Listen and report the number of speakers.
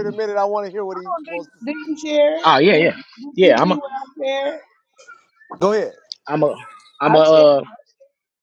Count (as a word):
three